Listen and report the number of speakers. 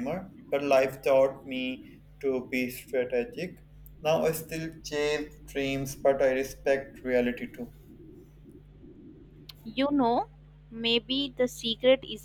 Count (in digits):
2